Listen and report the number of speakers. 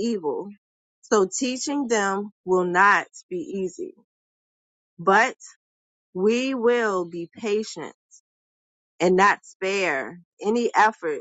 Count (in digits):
1